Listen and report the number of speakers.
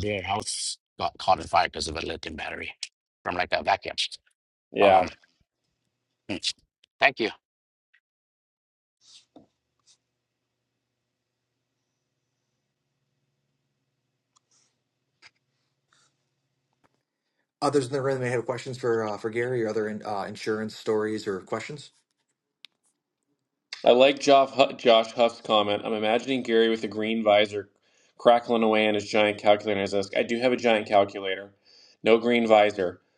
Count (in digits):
3